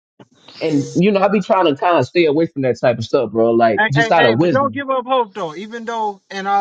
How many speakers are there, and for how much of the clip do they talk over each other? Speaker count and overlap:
2, about 14%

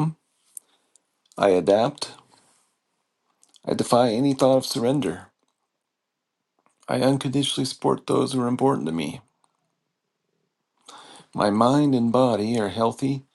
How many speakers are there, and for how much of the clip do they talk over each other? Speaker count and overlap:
1, no overlap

